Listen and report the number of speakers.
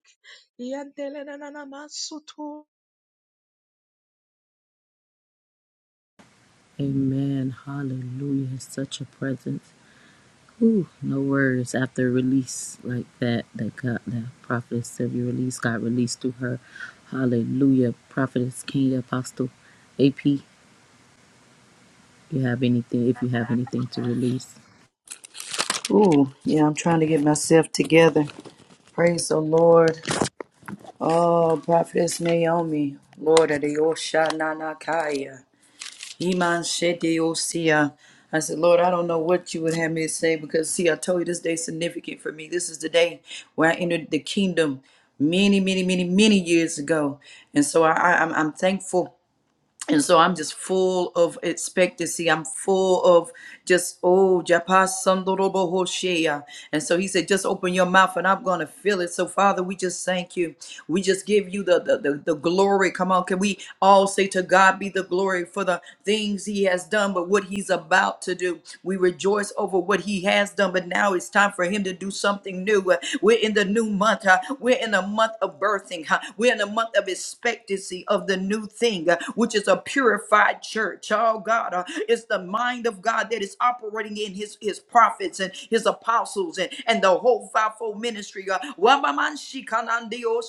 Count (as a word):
three